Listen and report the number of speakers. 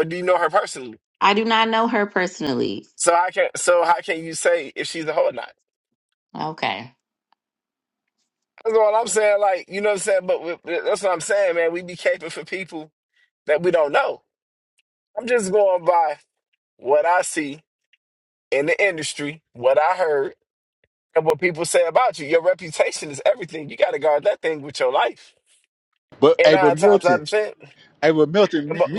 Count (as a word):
three